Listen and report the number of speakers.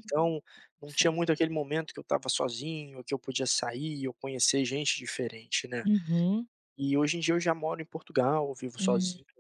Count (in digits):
2